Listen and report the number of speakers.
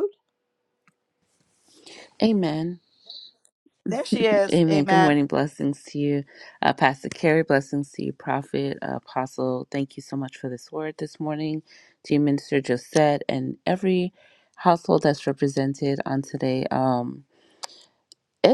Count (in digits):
2